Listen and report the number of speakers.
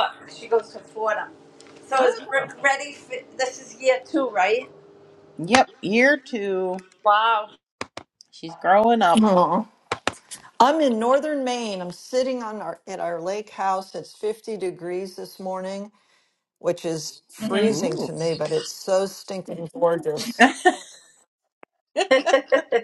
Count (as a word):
three